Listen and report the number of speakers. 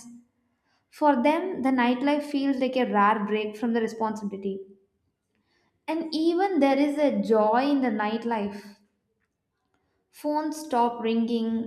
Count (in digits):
1